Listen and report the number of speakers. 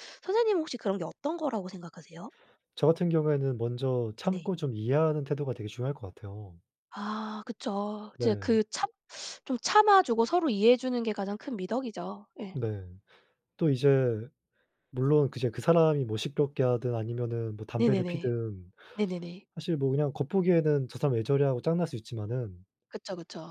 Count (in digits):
2